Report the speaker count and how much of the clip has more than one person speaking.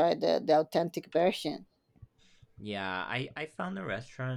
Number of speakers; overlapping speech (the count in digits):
2, no overlap